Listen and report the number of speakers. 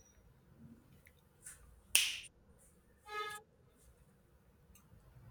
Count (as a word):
zero